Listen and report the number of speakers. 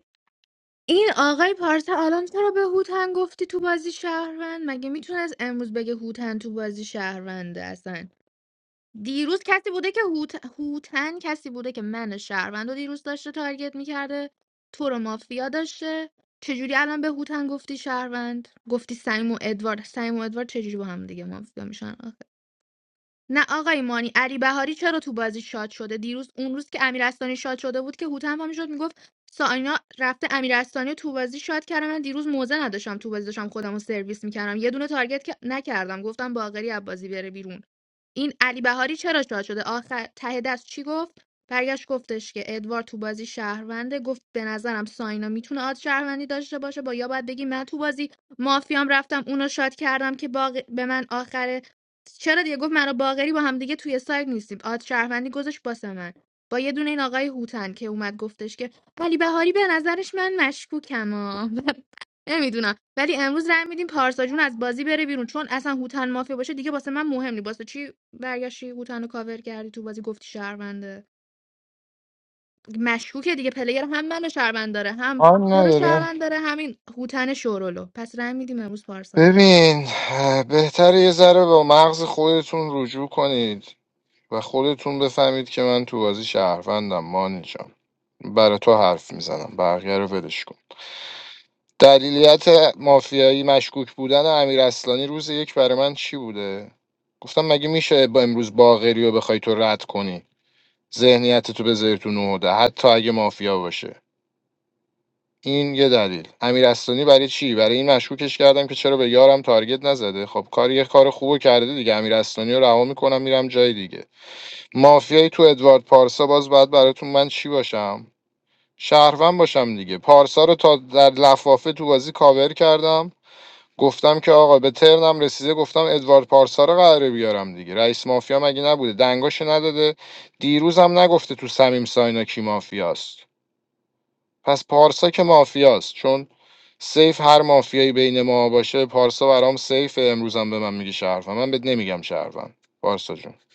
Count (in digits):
2